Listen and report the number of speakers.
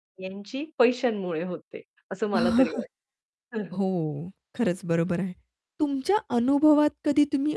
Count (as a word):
two